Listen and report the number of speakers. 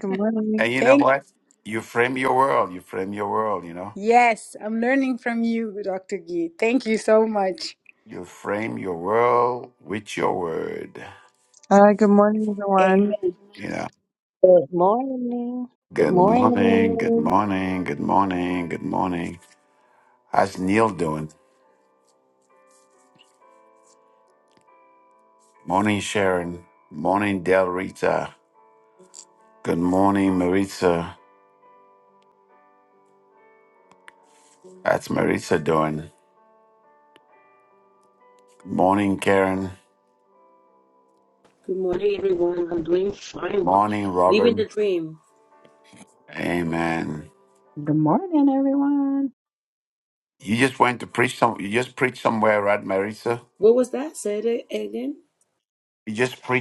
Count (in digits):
6